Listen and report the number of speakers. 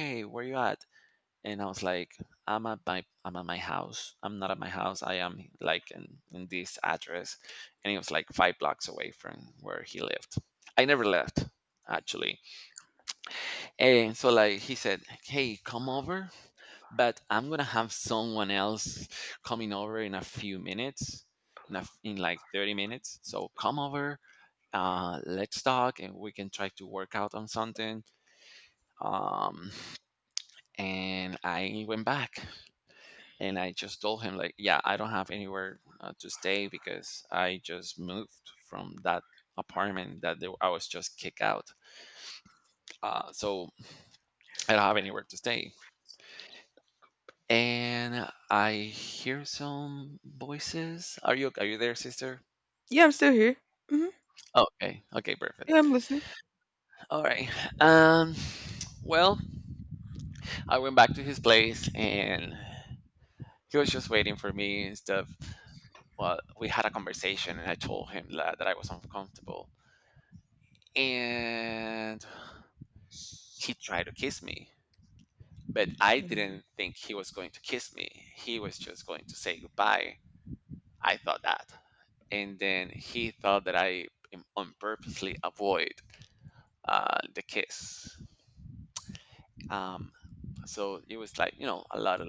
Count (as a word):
two